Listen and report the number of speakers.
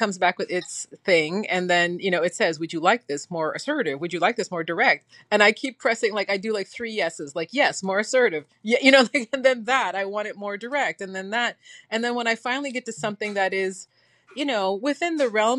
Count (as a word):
one